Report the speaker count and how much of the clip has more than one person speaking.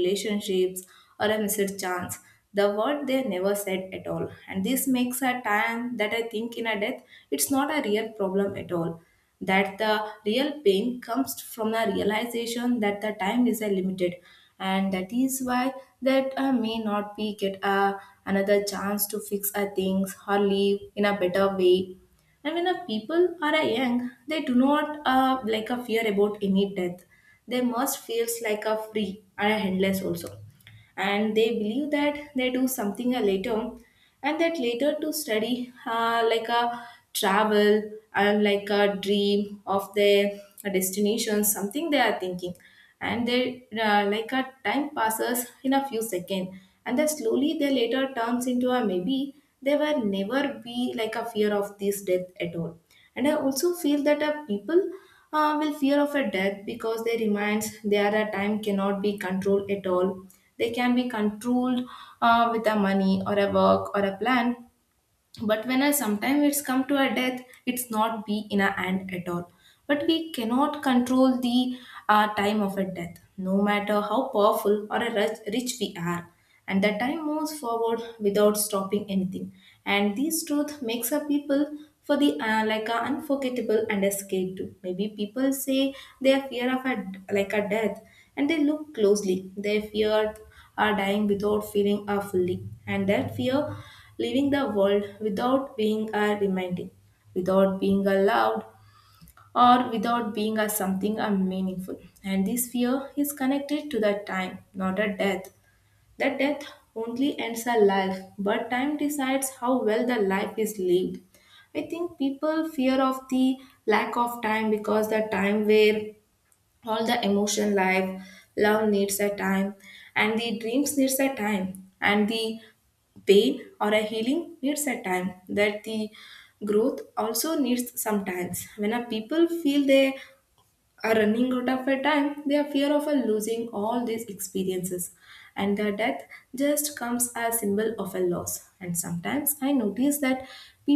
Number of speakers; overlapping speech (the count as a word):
one, no overlap